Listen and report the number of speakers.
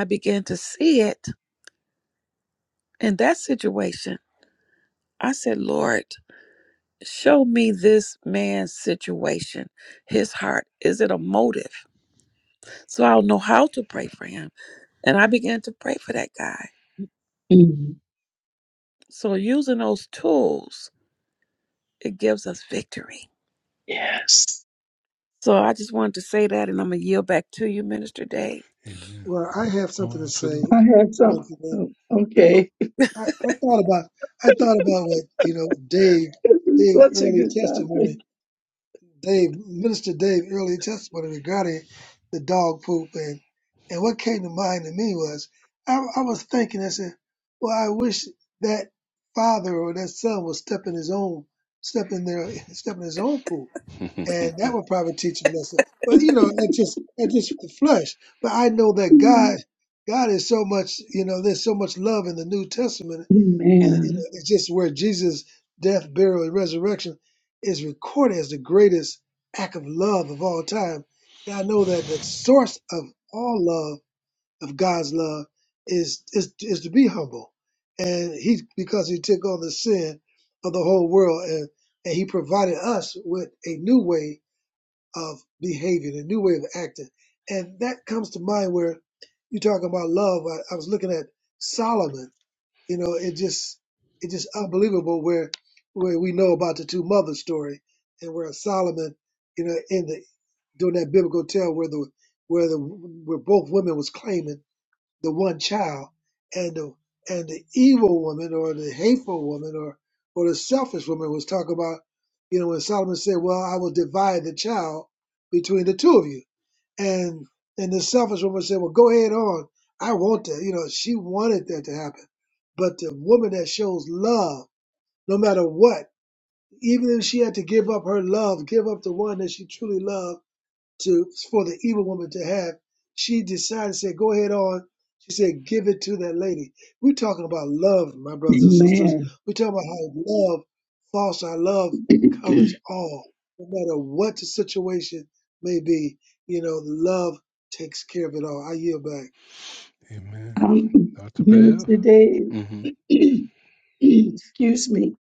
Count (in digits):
4